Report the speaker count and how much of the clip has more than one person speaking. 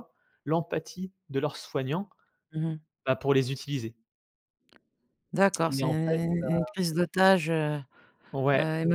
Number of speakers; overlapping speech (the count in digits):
2, about 14%